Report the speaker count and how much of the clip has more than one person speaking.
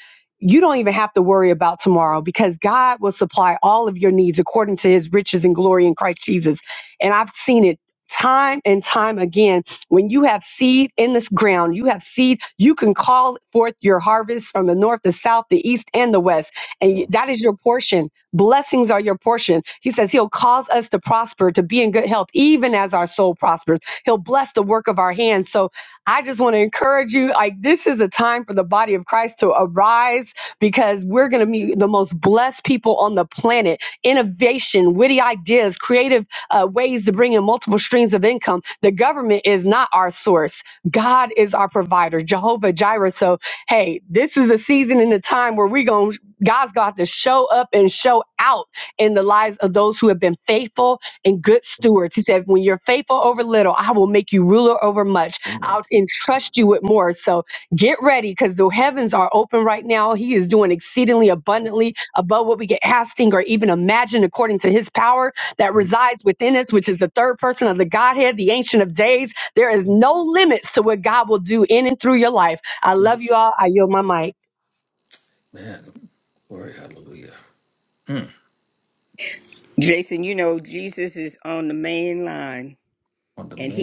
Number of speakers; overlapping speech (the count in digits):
3, about 1%